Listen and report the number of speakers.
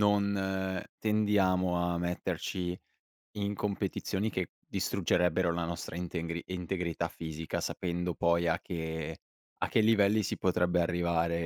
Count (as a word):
one